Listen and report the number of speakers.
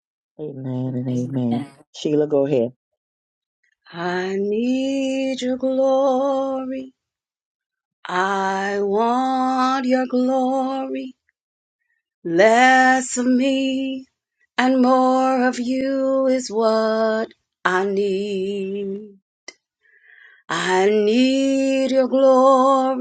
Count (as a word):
two